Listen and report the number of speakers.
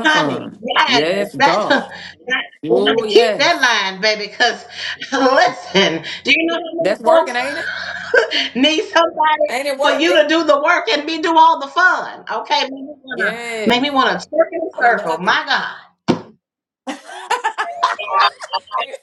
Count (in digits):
2